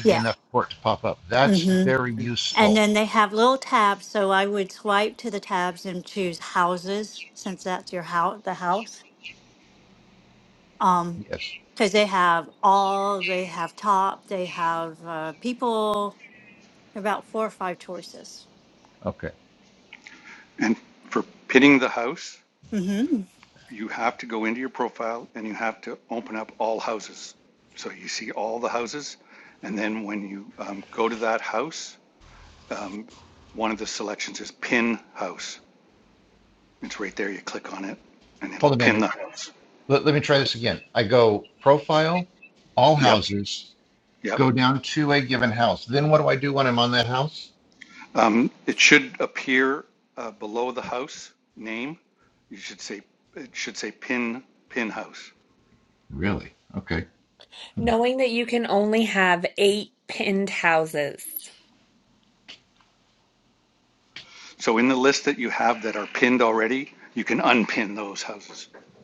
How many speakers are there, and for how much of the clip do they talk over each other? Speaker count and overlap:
four, about 3%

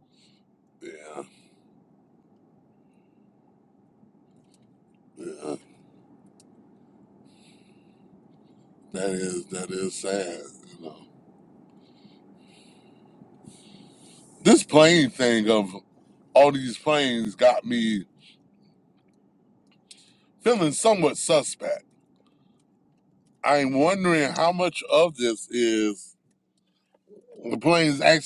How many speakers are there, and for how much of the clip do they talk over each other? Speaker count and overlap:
one, no overlap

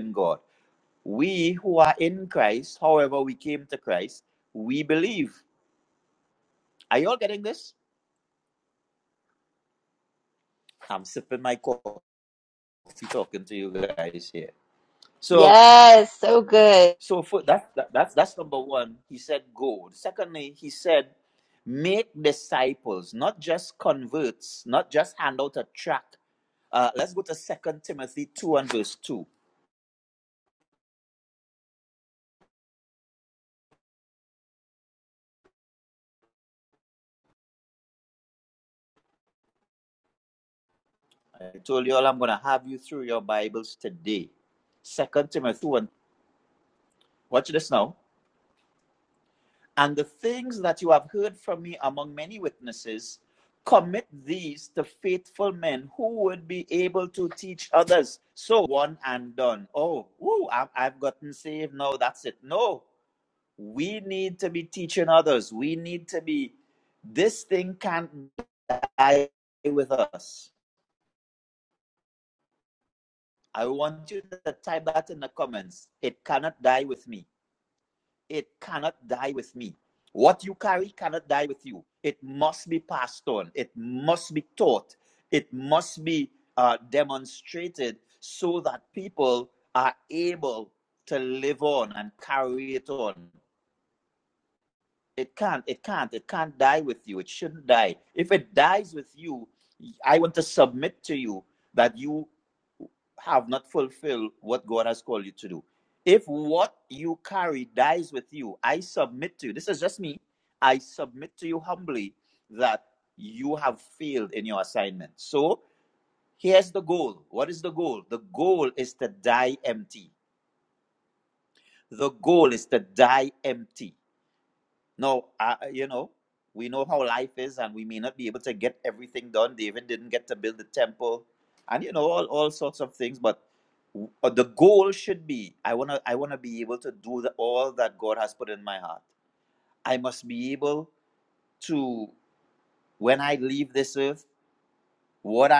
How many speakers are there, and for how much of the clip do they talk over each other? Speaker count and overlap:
two, under 1%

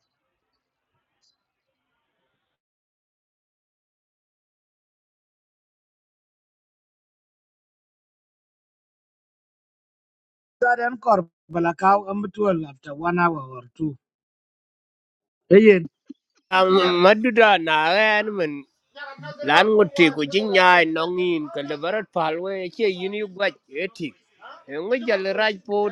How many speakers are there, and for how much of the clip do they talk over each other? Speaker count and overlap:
two, no overlap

